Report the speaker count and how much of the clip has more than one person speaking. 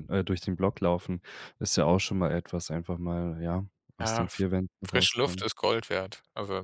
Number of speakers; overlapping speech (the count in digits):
2, about 16%